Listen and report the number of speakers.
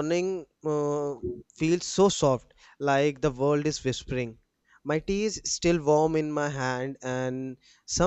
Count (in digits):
1